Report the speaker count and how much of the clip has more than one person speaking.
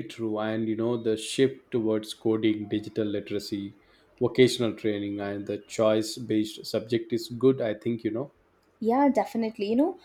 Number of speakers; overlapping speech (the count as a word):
two, no overlap